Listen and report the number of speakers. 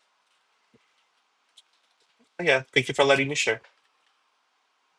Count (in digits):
1